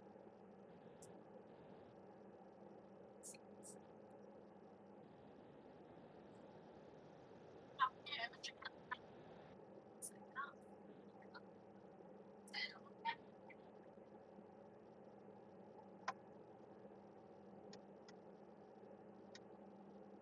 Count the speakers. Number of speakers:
0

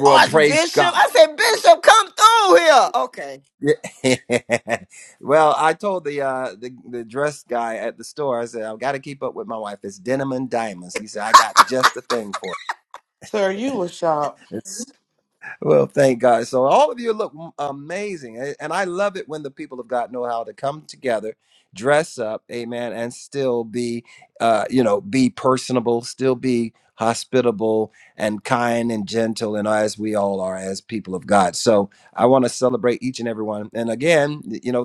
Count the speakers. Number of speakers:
3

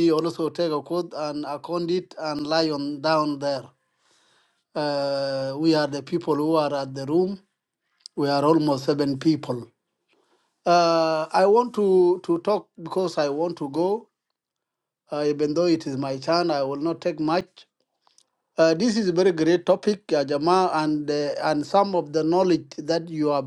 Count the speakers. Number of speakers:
1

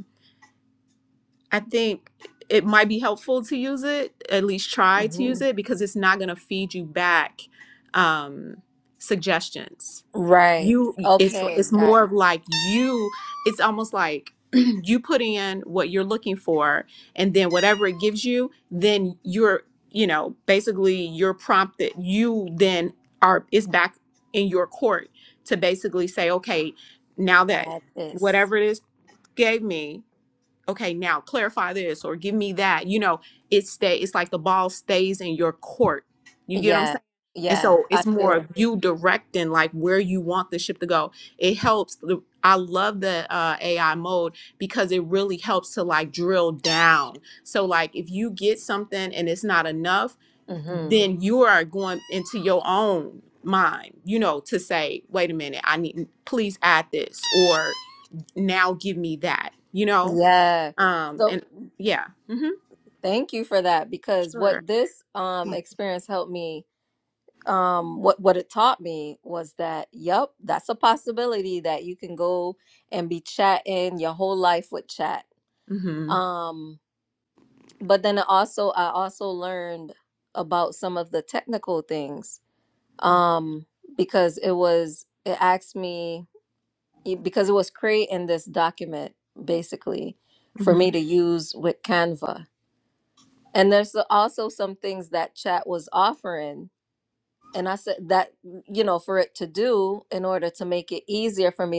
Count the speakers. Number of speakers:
2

